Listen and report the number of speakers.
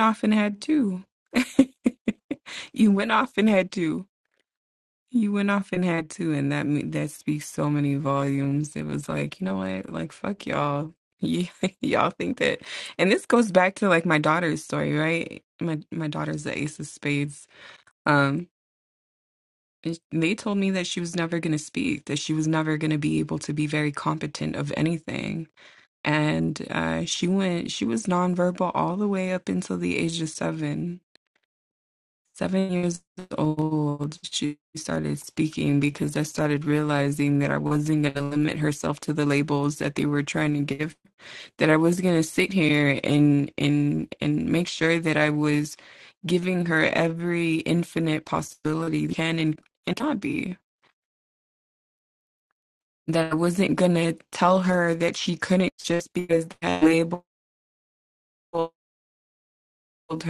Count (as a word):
one